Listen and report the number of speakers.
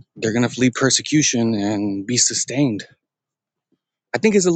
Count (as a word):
one